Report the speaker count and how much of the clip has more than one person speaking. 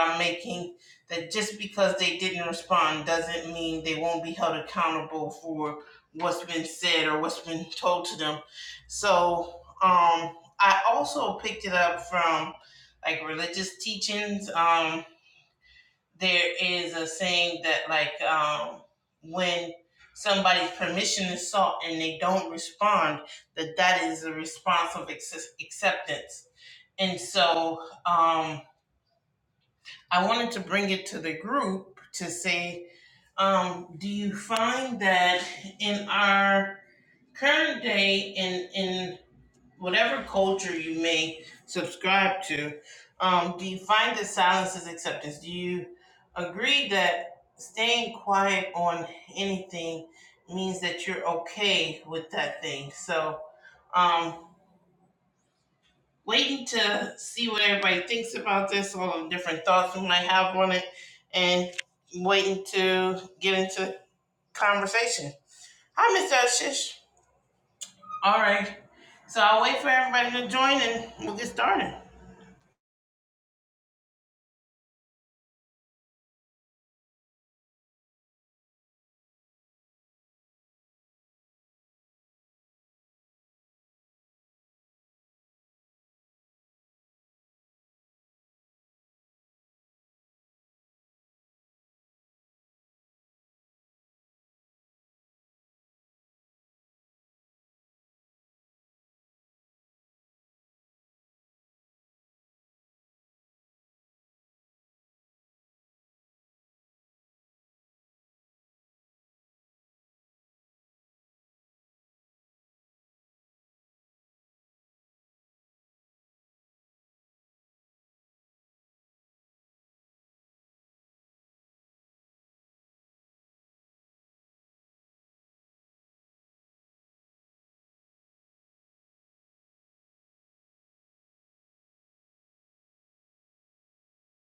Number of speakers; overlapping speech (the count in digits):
1, no overlap